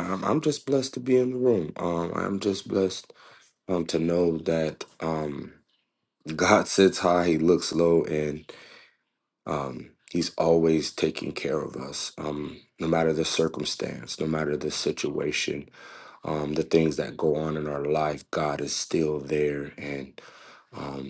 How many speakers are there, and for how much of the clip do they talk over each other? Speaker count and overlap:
one, no overlap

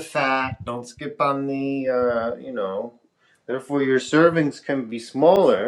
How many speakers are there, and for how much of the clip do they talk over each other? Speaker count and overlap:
one, no overlap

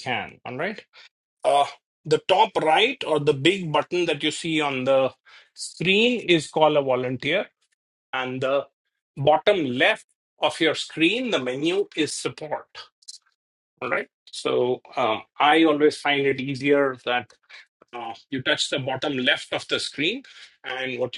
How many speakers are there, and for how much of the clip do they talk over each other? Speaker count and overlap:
one, no overlap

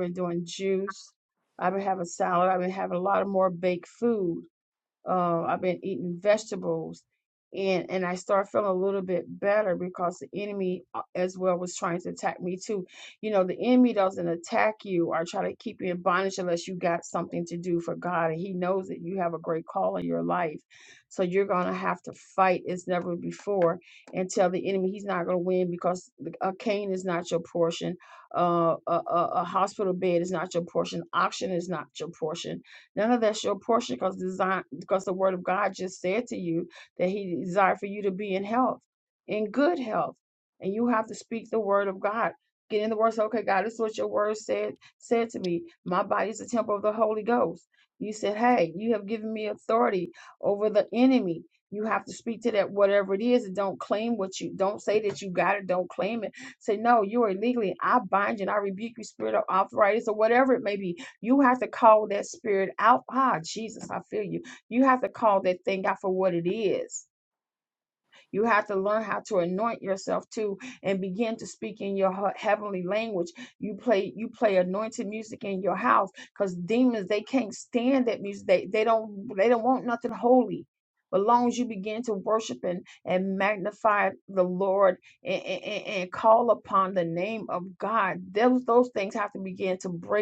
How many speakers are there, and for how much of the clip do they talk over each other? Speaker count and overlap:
one, no overlap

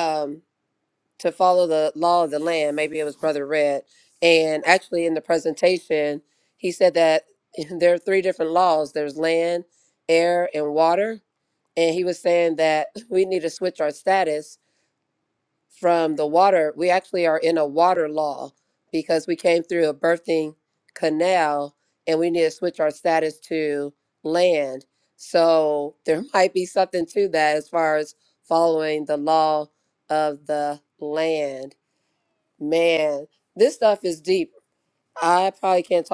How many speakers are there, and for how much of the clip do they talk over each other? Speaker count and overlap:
one, no overlap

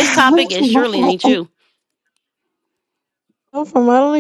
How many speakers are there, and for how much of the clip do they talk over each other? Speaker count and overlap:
two, about 12%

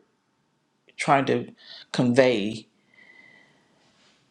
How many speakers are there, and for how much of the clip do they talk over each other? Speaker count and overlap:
one, no overlap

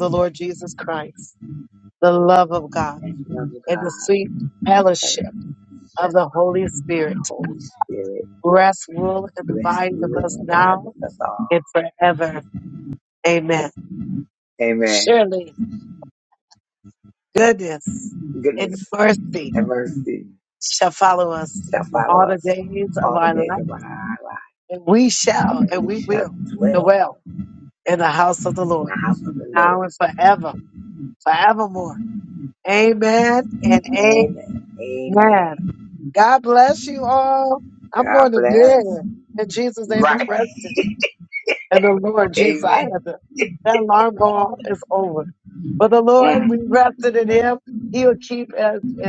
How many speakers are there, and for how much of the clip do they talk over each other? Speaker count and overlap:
two, about 18%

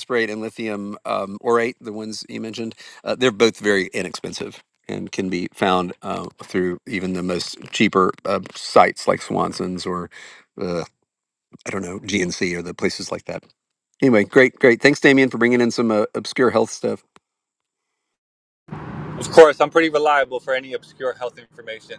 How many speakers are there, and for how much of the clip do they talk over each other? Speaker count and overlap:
two, no overlap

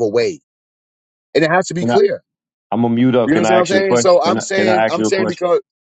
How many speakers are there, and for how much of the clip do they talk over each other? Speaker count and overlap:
two, about 40%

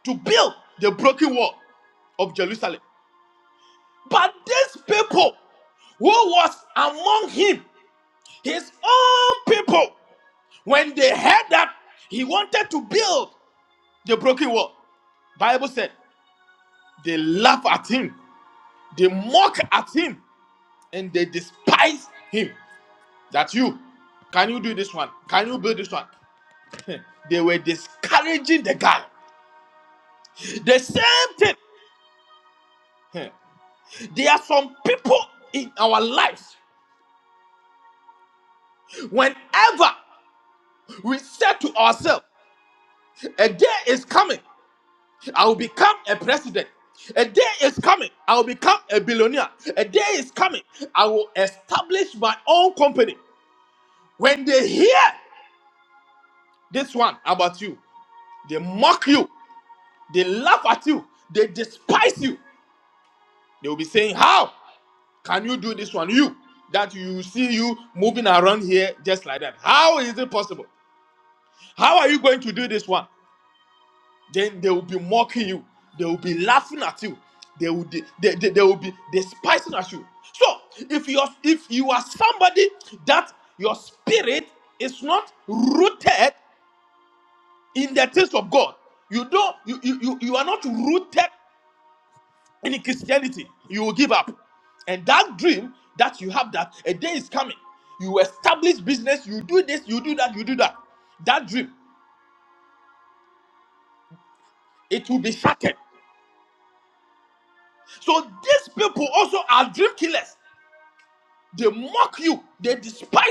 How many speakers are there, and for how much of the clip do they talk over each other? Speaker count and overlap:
one, no overlap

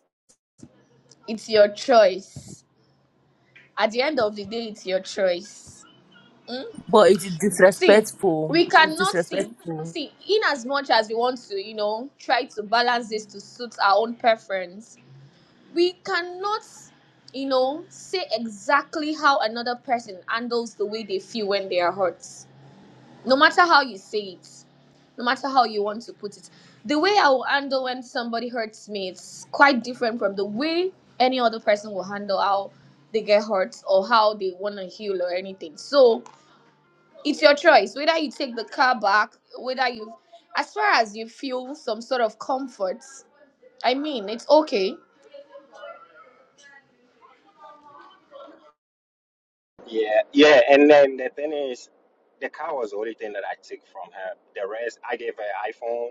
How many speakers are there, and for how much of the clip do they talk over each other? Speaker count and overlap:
three, about 2%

